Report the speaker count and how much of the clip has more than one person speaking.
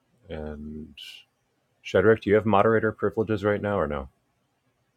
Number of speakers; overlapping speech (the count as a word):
one, no overlap